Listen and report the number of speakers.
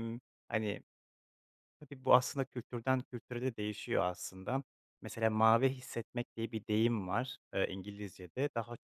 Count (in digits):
1